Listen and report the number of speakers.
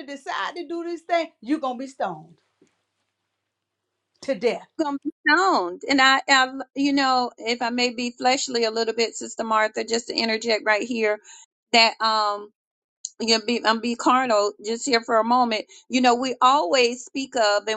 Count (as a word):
two